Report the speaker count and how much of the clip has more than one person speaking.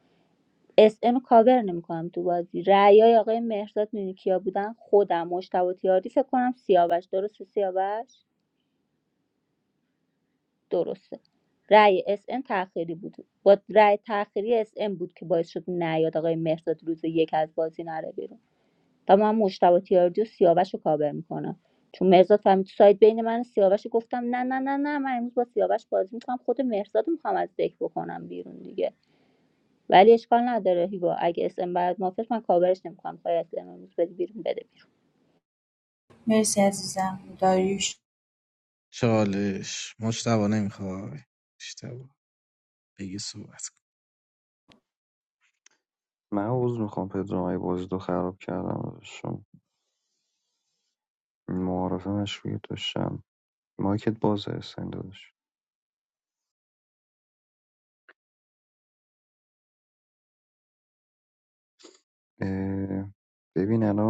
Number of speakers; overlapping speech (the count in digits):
4, no overlap